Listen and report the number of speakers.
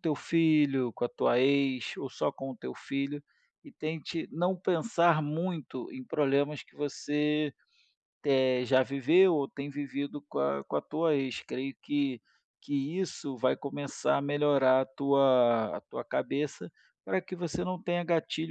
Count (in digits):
1